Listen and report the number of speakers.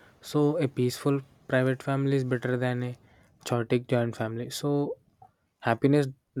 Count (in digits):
1